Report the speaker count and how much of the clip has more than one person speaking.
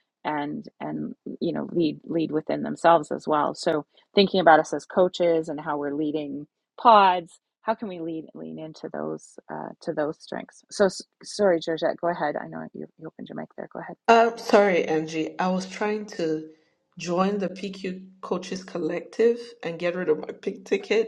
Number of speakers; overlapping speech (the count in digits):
2, no overlap